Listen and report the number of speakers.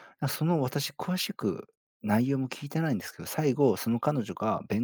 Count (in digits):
1